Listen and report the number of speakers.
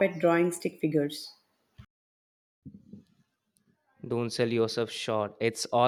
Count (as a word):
two